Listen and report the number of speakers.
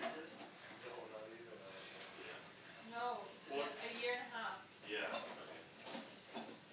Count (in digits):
3